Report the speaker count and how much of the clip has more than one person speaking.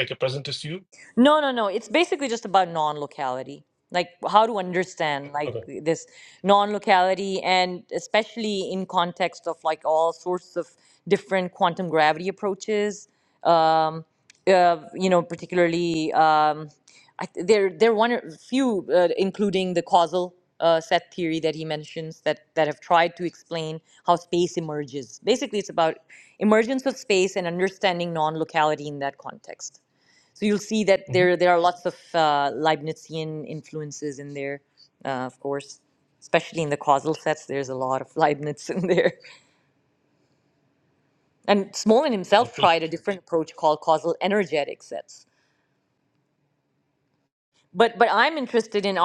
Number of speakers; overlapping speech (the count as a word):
two, about 1%